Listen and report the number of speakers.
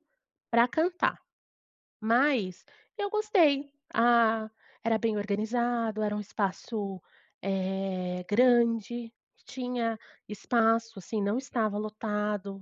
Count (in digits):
1